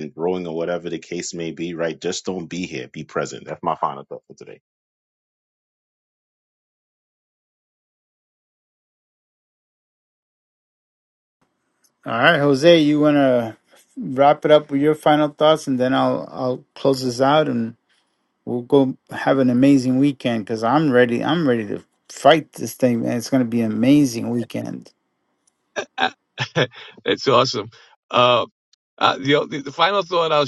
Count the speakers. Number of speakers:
3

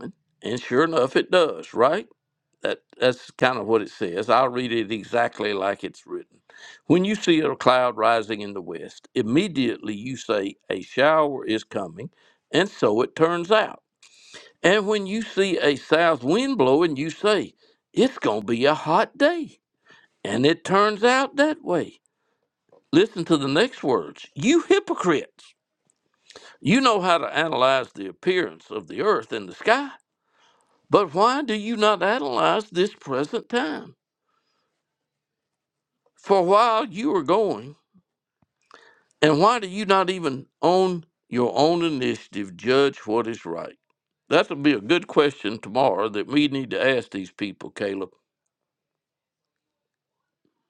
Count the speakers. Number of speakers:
1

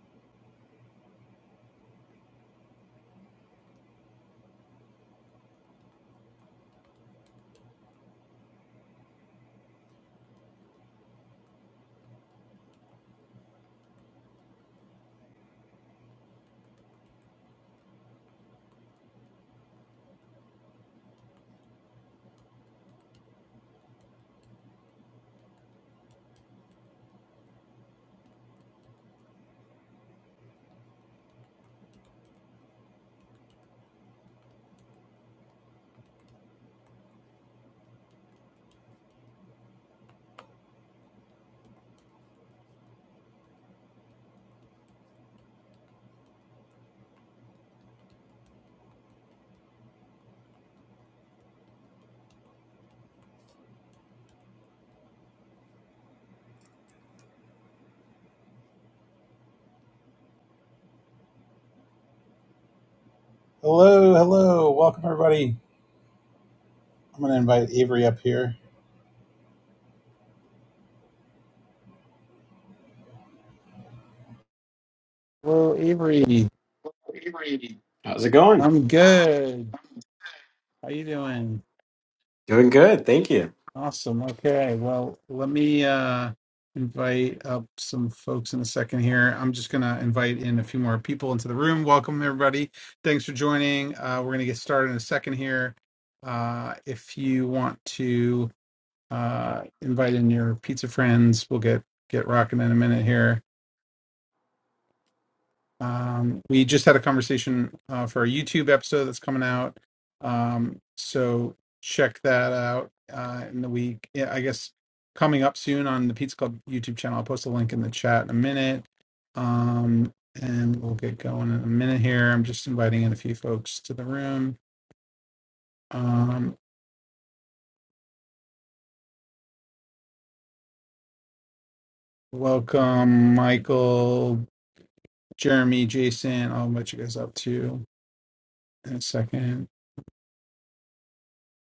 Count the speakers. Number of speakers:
2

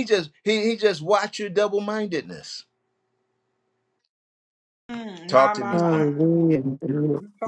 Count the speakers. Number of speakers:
3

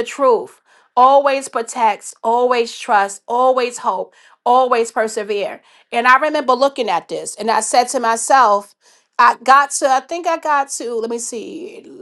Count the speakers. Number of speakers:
1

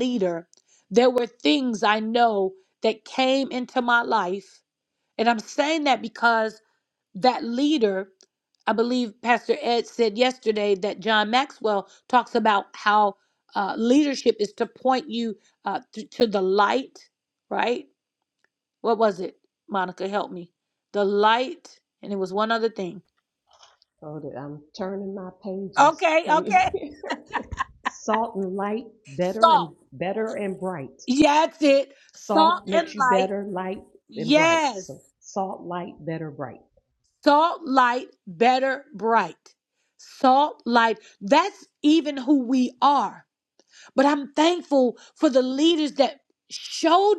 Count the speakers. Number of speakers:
2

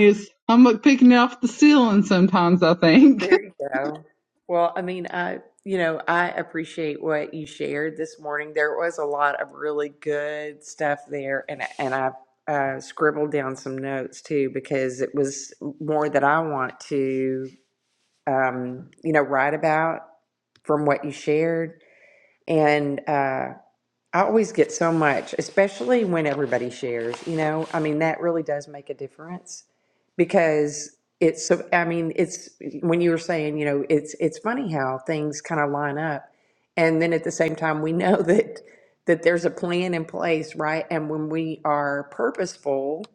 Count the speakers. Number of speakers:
2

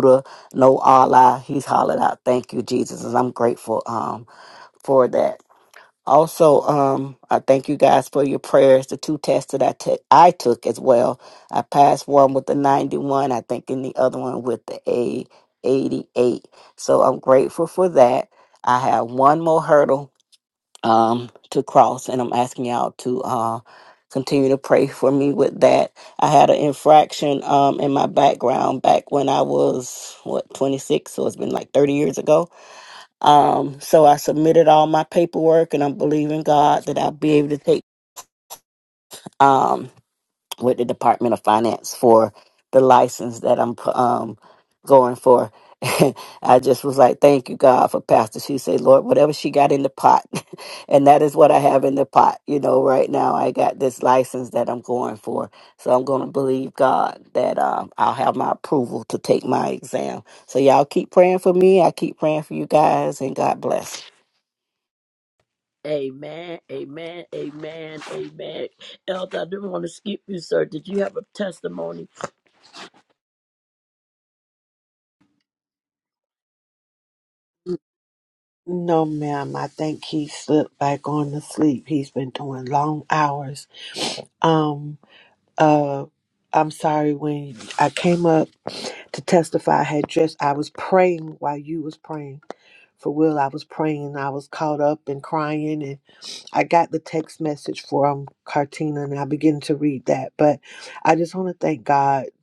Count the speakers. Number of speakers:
3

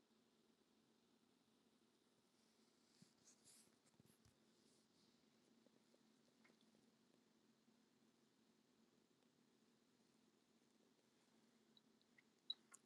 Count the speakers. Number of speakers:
0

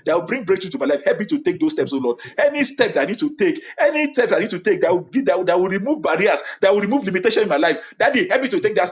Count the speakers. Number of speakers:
1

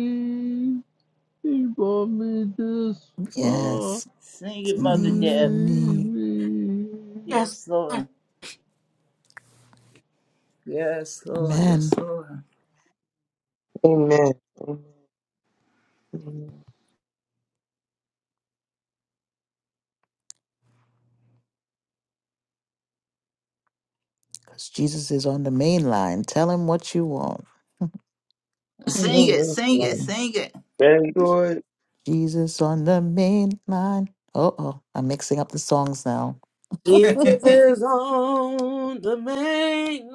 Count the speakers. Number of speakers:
5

